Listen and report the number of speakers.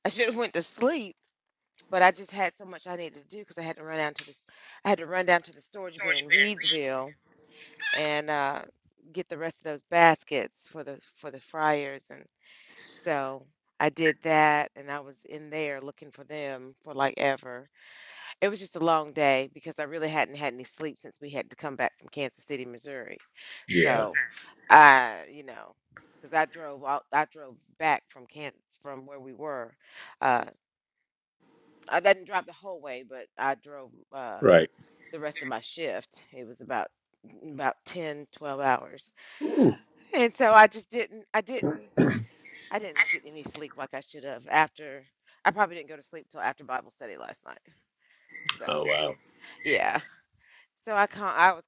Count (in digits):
2